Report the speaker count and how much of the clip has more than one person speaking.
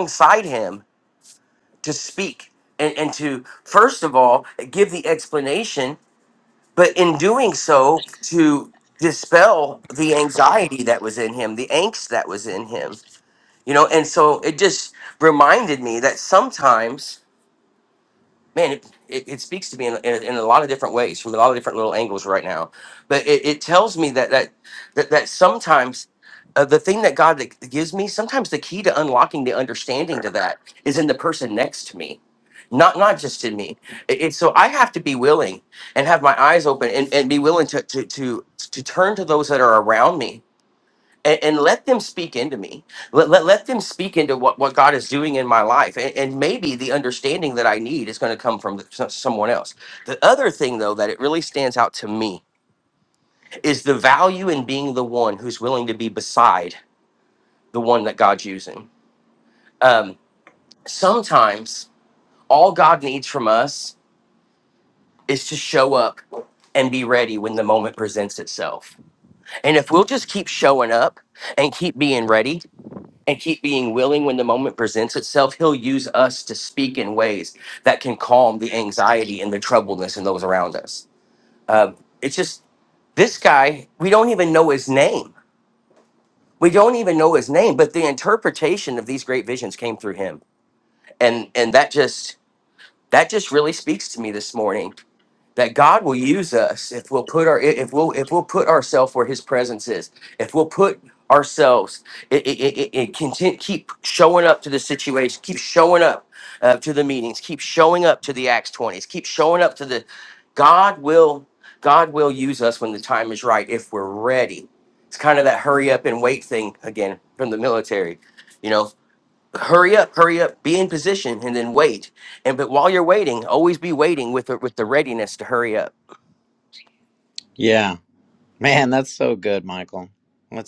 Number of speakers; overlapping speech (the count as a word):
two, no overlap